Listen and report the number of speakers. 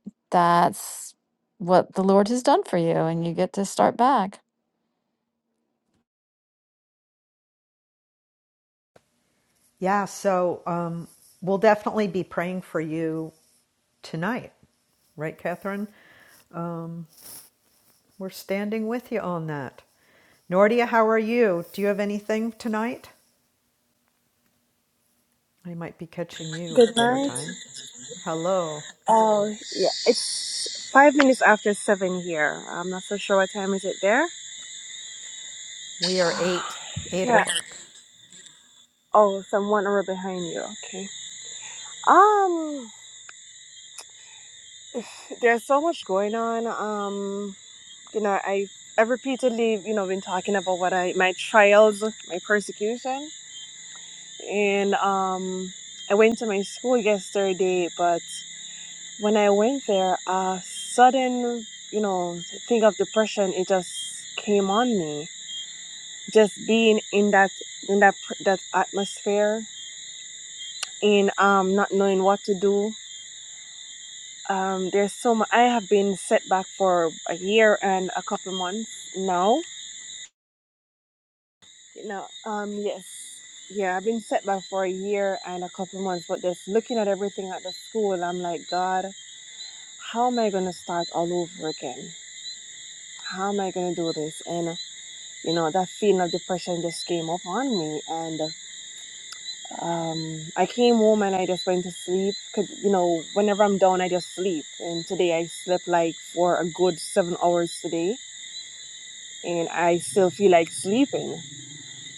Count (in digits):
3